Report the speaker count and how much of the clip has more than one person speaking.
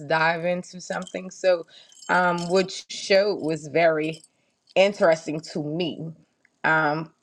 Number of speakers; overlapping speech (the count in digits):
1, no overlap